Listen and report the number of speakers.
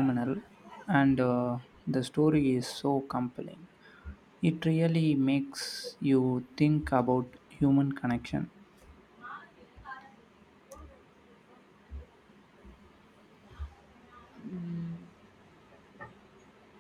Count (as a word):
one